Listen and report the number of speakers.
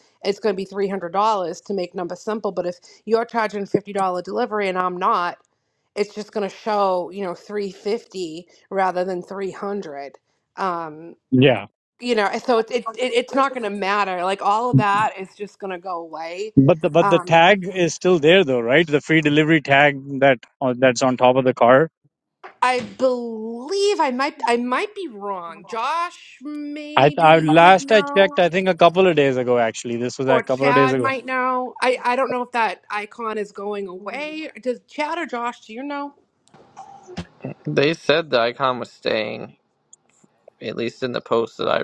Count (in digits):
3